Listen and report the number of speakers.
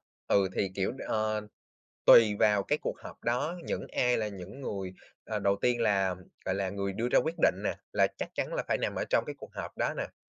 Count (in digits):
1